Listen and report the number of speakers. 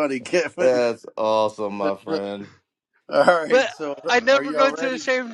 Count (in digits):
3